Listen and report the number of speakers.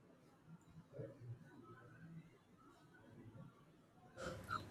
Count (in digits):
0